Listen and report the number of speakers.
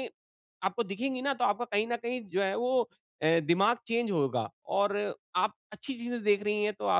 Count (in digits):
1